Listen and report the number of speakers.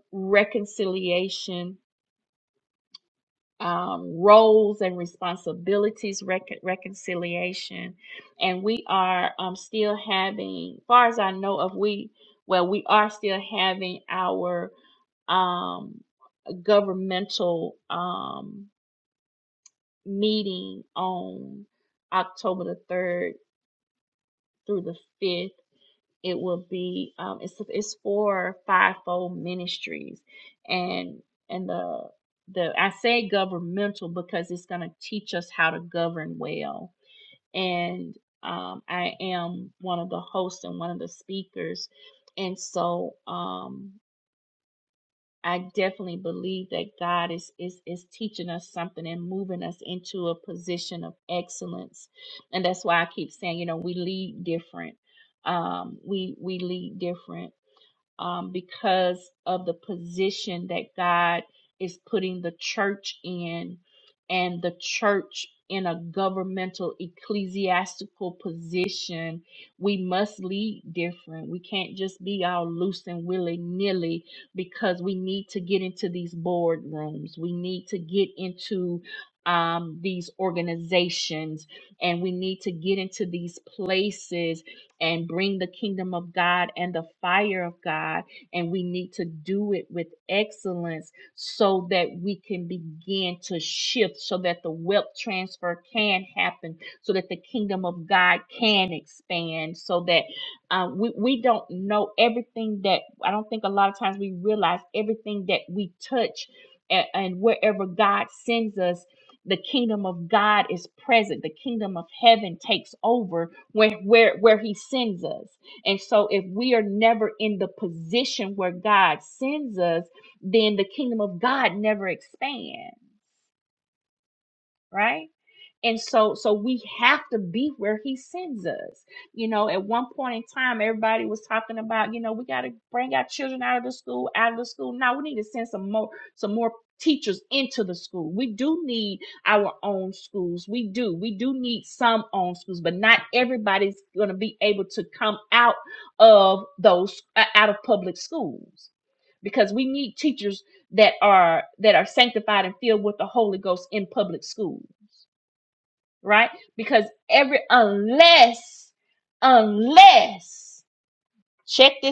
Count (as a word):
one